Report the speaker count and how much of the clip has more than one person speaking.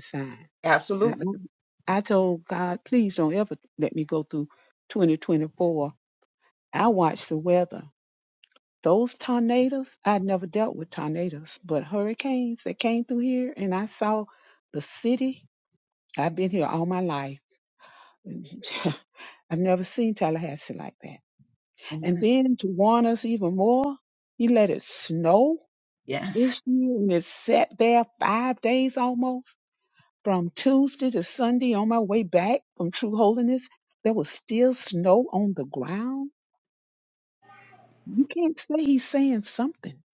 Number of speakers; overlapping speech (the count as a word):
two, about 2%